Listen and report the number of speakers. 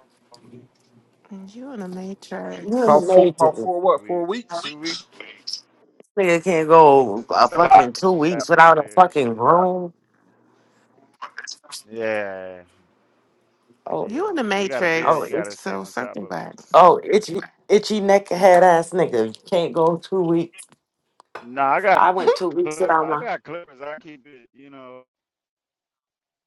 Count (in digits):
4